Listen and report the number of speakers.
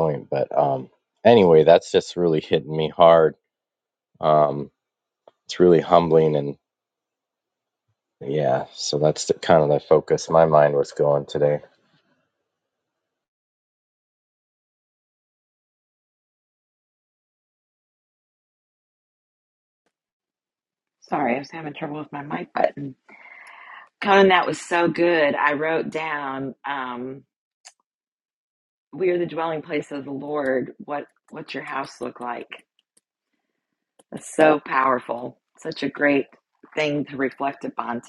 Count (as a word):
two